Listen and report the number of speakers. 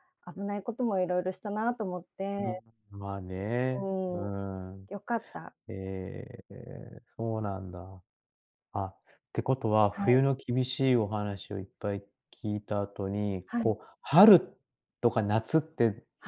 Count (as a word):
two